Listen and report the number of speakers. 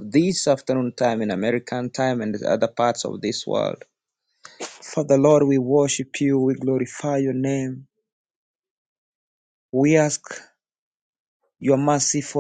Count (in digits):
1